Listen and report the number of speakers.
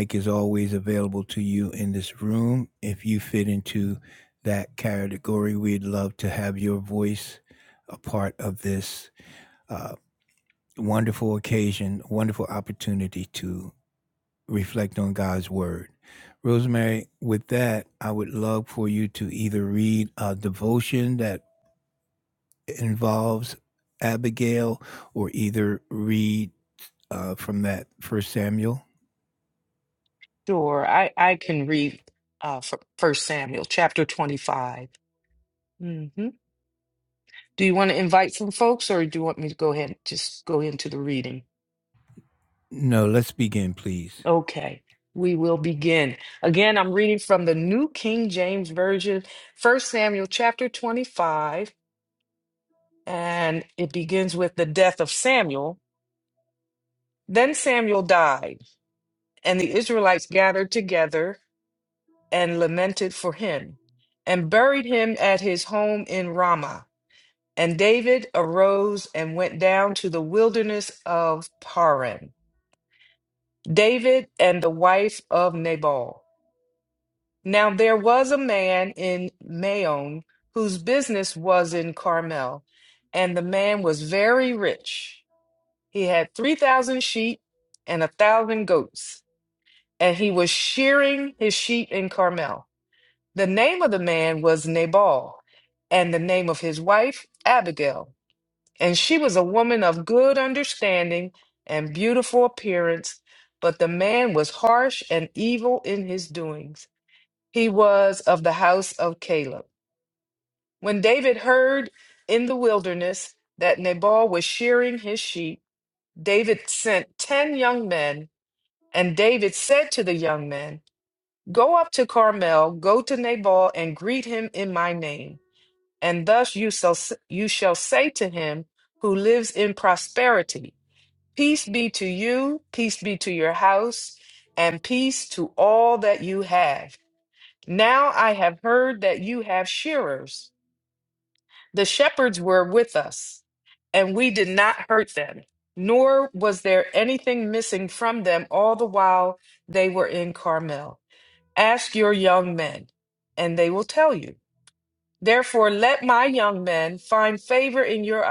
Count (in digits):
2